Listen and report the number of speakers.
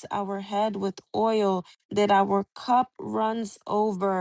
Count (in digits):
1